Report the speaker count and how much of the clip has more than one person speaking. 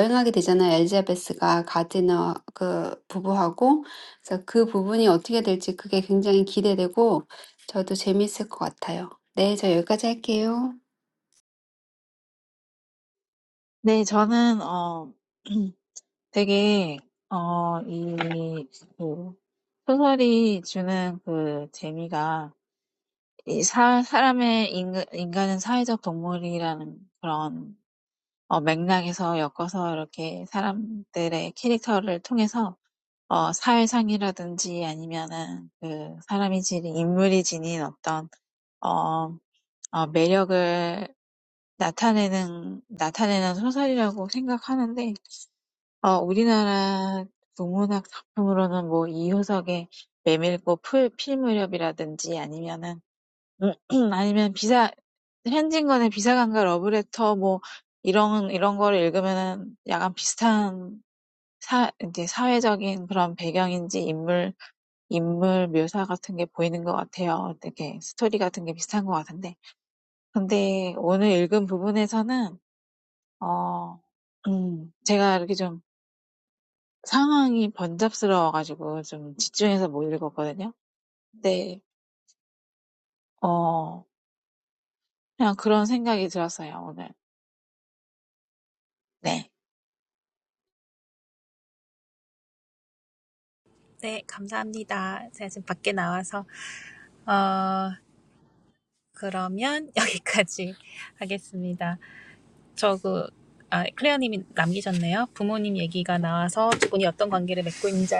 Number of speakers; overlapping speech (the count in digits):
3, no overlap